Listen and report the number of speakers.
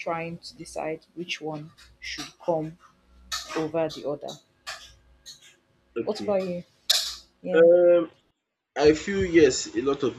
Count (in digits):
2